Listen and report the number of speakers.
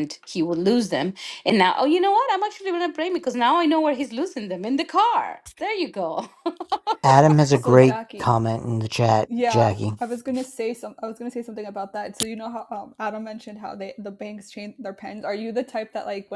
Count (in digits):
3